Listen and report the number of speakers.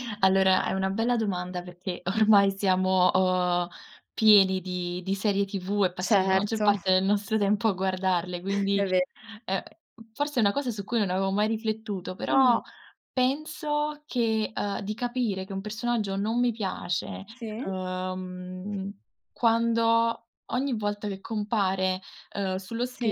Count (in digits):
2